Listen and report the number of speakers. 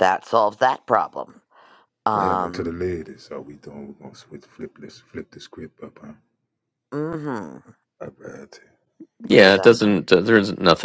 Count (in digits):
3